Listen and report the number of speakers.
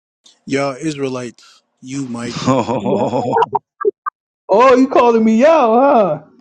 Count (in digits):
3